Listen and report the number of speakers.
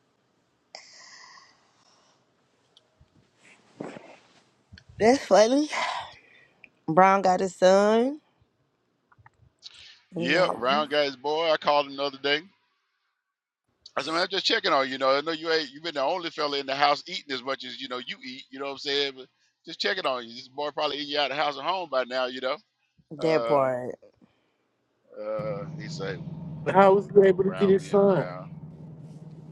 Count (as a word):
three